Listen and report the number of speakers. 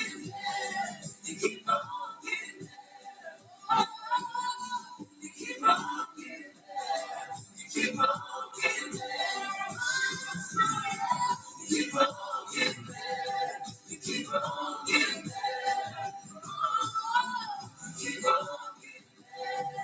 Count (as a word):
zero